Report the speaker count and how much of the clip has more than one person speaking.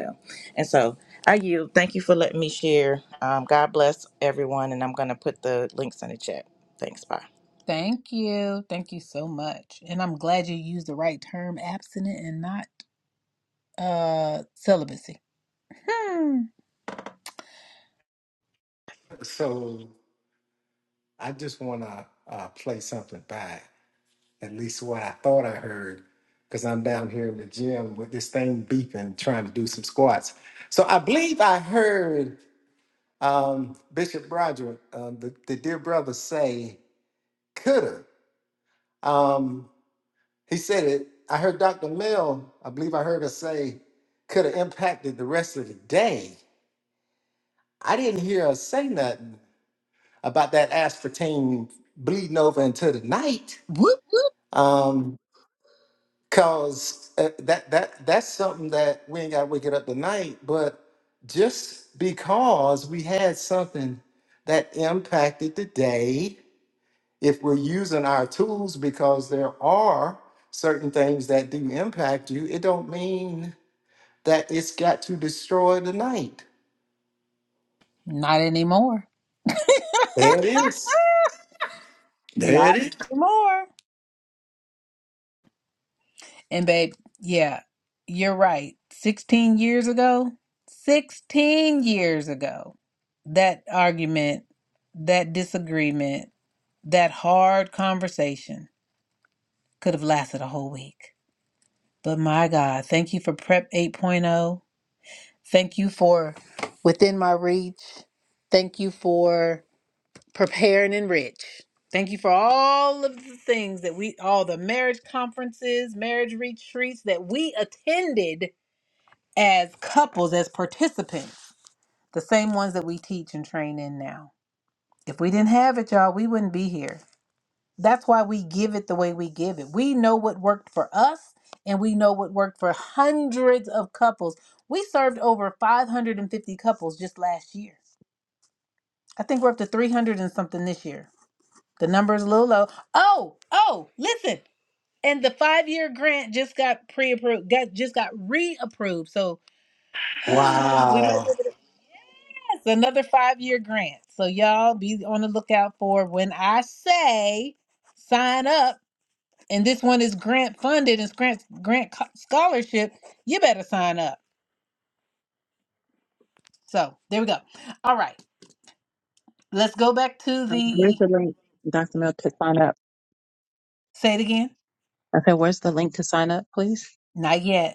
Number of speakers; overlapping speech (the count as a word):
four, about 1%